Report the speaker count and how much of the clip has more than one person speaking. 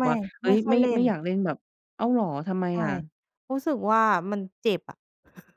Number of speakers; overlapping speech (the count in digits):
2, about 22%